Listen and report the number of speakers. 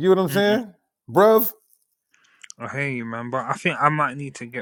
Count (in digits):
2